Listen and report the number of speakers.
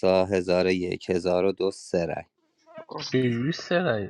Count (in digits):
2